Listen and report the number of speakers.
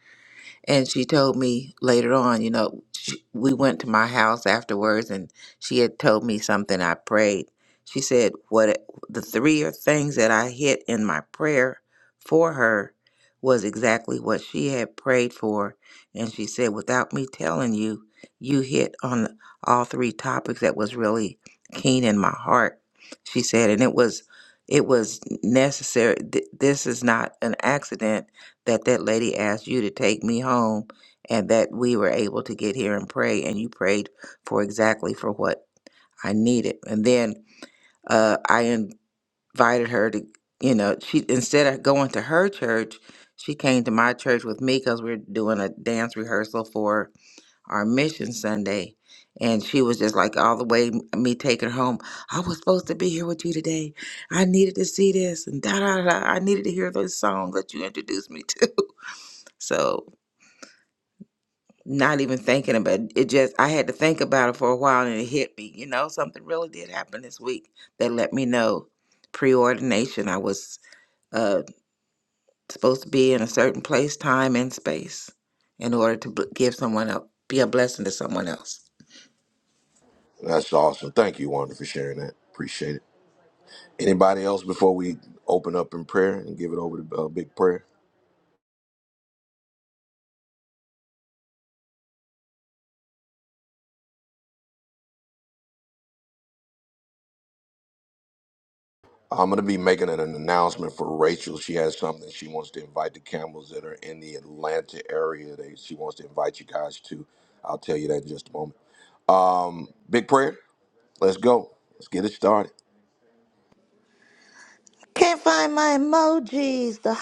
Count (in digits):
3